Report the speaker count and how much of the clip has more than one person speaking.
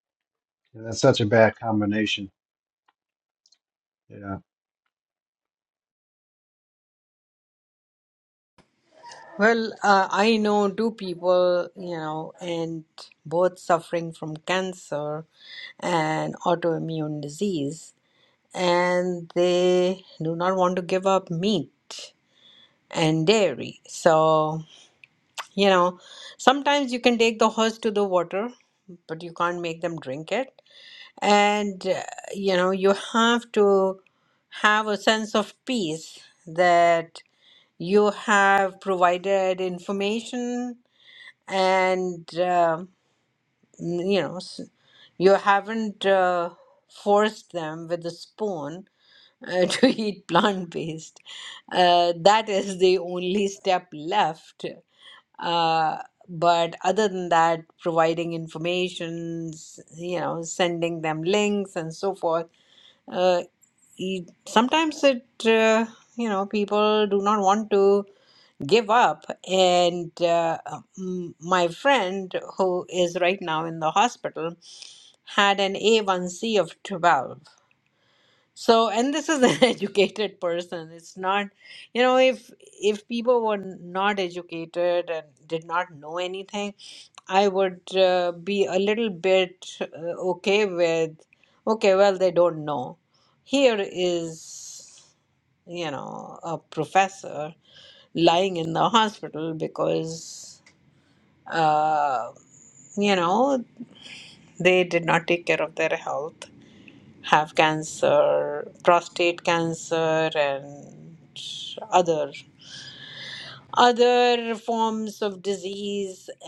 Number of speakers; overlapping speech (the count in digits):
2, no overlap